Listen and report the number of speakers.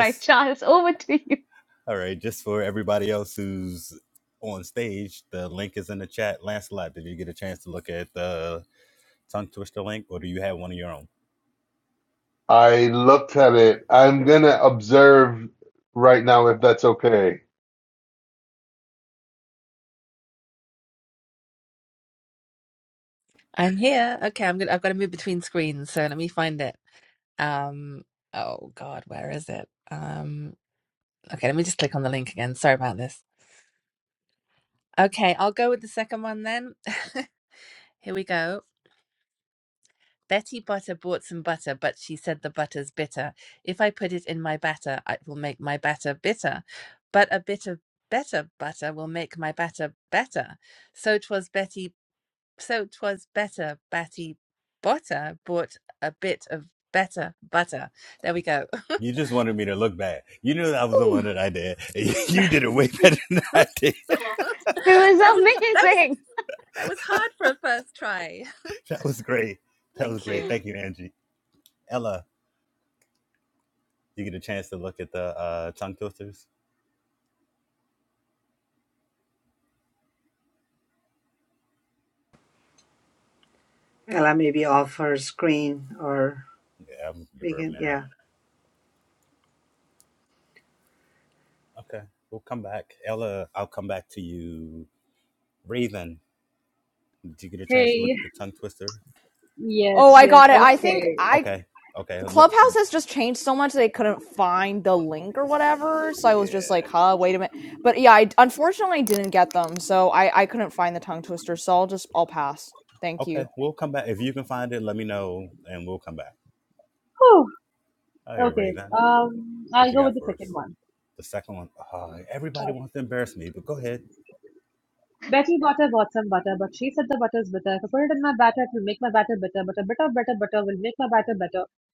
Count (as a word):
seven